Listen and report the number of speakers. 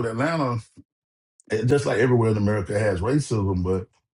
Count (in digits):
1